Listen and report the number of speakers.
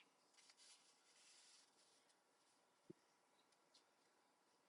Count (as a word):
zero